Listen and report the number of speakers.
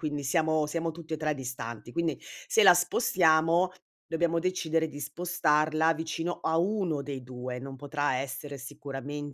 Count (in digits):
1